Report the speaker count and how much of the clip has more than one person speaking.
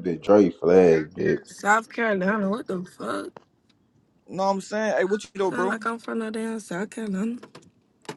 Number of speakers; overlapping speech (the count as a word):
three, about 3%